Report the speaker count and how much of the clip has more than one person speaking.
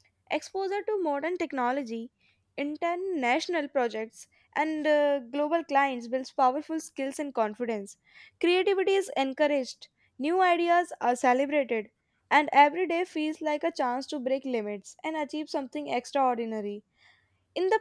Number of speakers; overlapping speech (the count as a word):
one, no overlap